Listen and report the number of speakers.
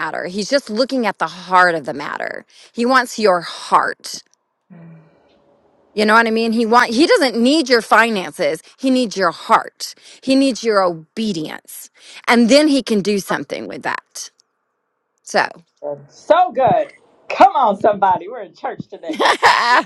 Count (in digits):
2